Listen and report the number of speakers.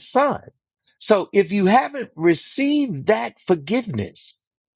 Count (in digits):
1